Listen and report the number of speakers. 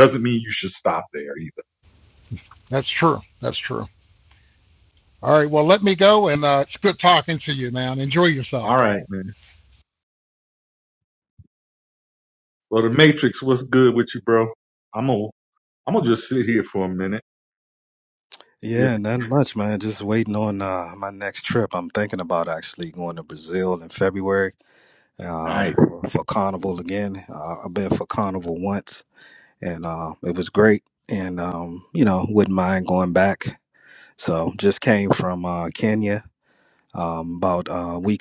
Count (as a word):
three